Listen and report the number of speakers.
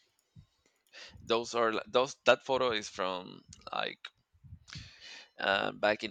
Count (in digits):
1